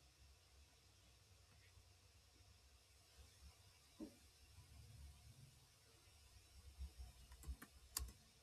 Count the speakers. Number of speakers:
zero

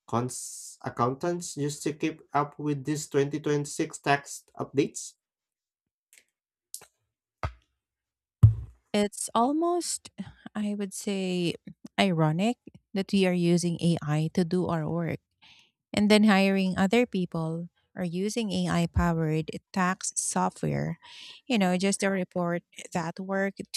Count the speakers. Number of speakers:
two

